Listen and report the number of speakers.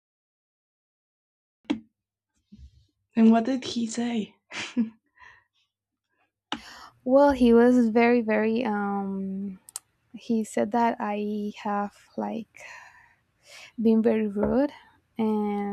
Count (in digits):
2